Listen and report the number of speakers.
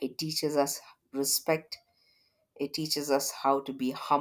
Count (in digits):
1